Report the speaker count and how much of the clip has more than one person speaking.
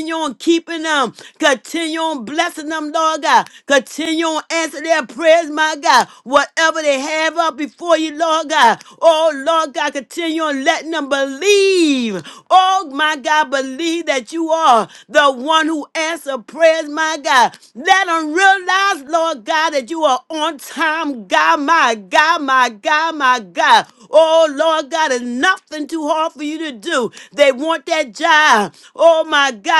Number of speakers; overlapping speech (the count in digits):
1, no overlap